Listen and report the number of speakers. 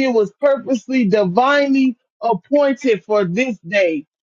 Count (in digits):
1